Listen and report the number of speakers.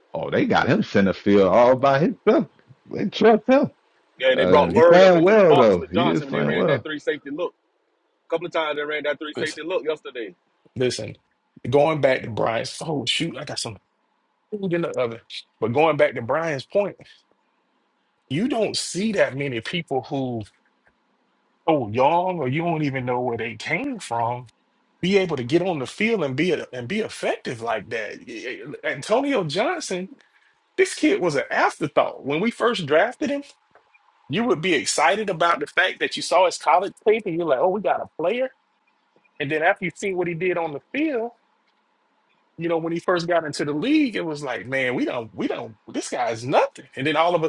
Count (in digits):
3